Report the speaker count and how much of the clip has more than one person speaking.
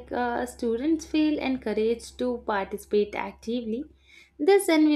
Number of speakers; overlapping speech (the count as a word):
one, no overlap